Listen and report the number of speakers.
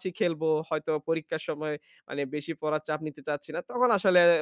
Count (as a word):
one